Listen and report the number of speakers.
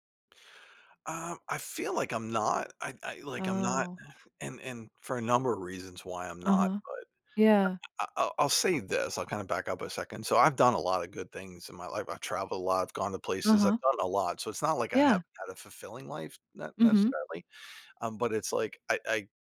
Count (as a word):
two